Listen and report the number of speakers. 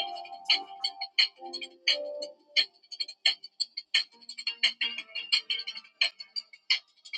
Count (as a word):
zero